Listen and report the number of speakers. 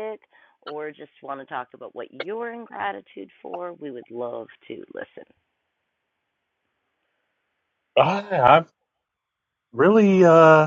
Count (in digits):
2